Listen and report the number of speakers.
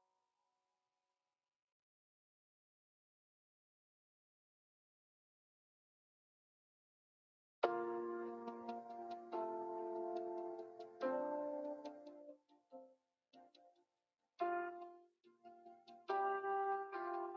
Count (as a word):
zero